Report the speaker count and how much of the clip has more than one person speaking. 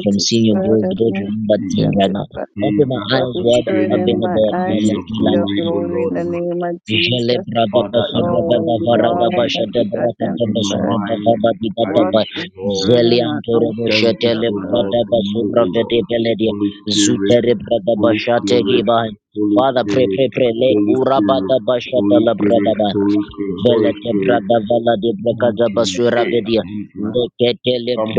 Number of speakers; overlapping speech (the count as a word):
three, about 73%